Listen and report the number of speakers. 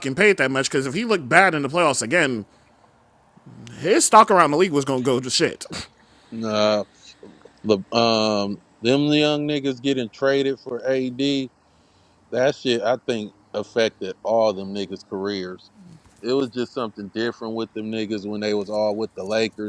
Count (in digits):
2